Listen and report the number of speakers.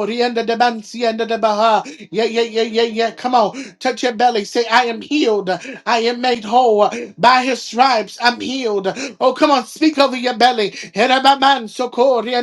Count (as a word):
one